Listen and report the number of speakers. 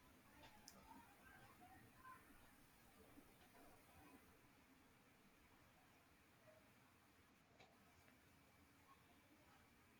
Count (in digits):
0